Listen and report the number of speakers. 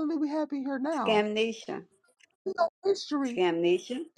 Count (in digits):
2